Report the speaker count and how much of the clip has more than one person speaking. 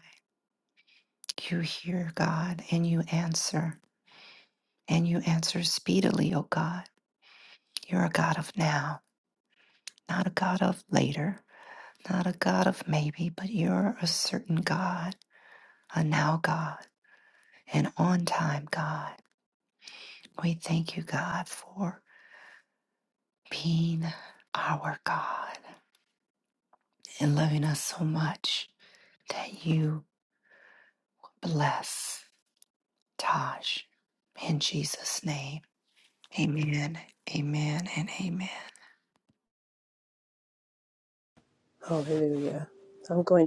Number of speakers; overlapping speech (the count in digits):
2, no overlap